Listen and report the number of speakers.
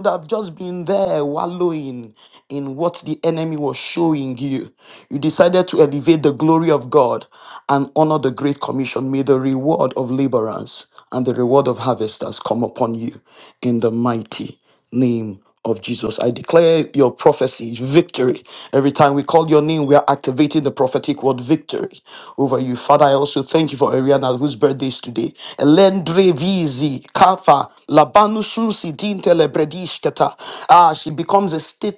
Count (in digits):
1